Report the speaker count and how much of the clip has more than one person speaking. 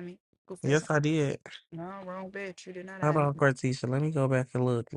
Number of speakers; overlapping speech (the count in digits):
2, about 12%